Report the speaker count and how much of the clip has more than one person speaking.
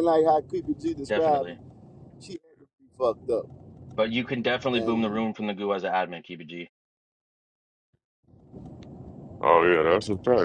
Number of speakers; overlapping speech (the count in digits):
3, about 8%